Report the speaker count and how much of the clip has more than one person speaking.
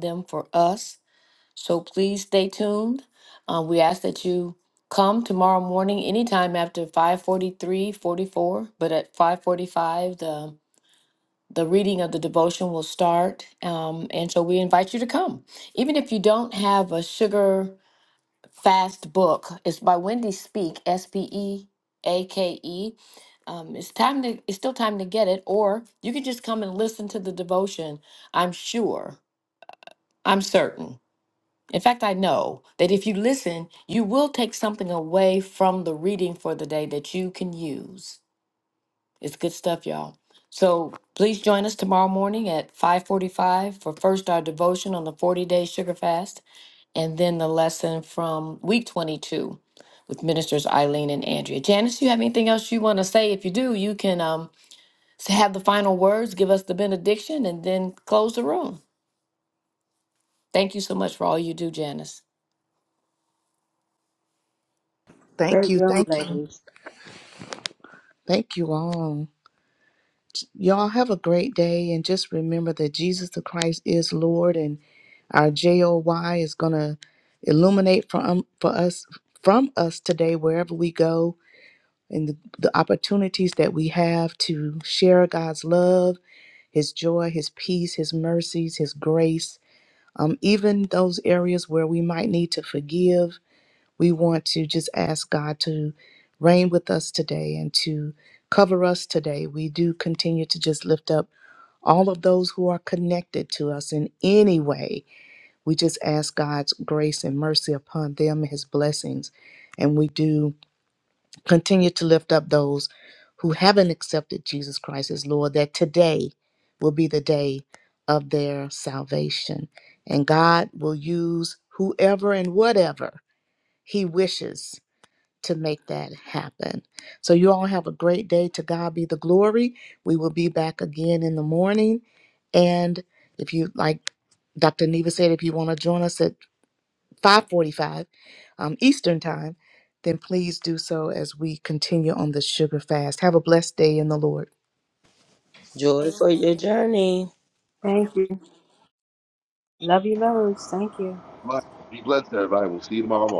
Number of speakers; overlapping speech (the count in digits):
5, about 1%